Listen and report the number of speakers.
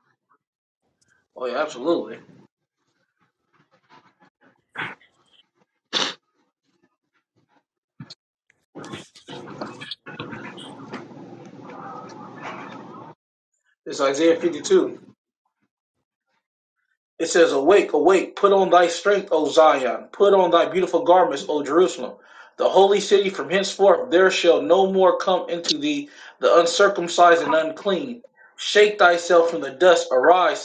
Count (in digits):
1